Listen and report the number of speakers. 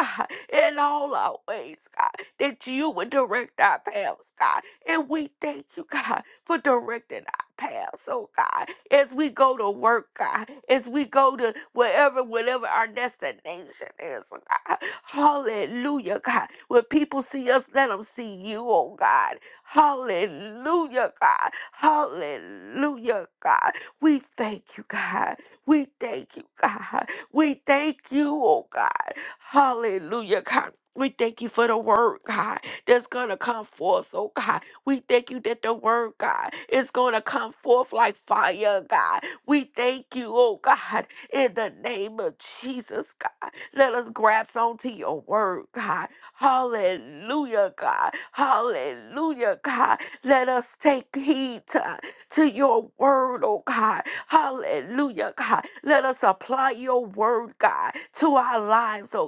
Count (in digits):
1